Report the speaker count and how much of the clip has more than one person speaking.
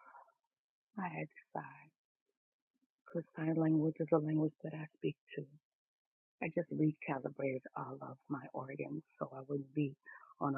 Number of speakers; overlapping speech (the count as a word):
one, no overlap